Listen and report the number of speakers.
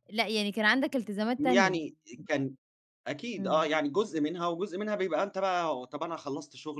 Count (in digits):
2